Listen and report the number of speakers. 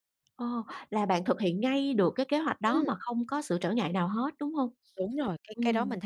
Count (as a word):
two